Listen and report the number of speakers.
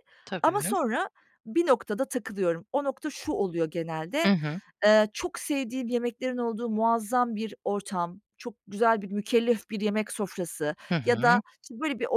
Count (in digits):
2